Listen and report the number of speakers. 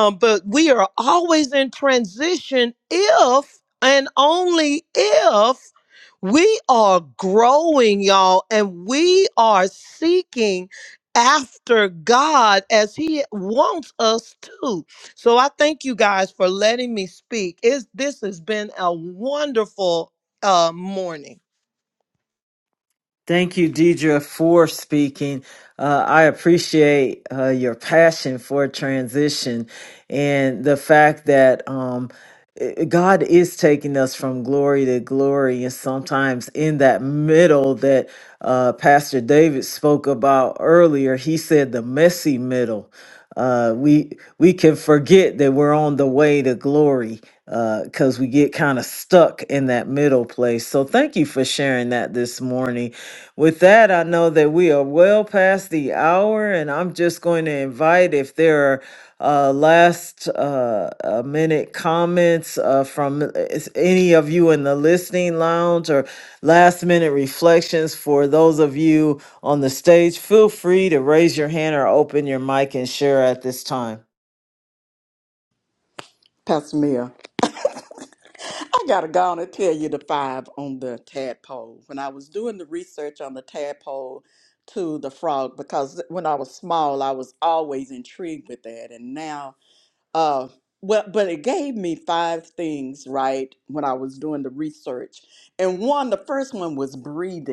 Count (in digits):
3